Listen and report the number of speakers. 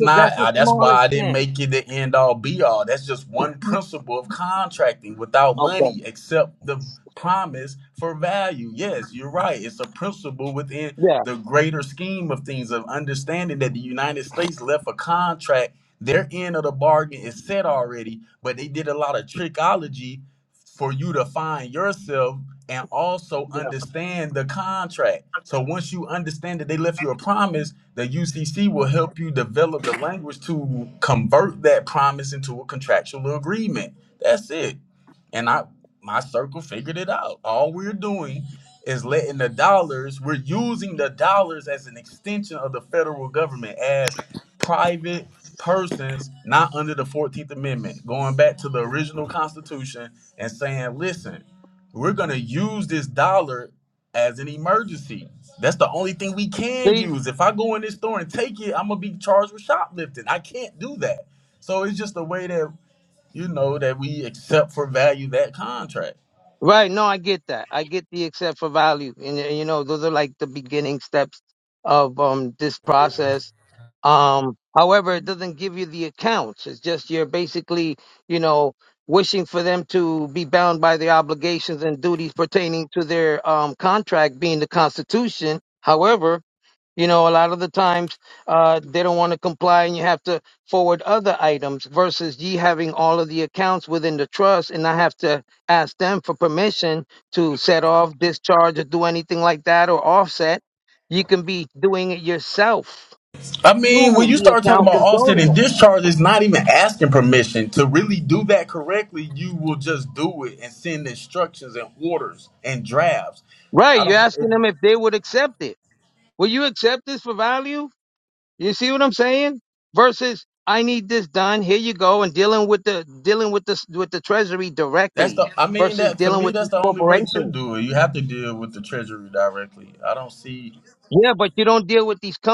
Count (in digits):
2